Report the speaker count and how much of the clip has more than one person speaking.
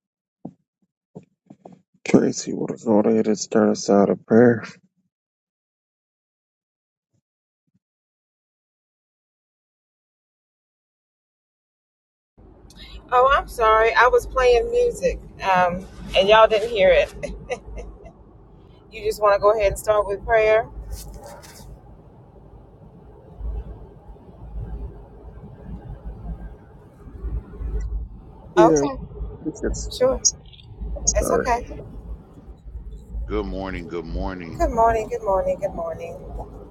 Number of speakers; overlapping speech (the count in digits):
3, about 2%